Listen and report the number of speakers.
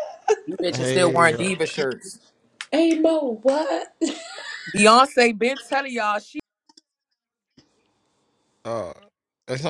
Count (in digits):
3